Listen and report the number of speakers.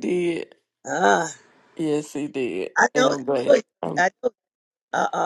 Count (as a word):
two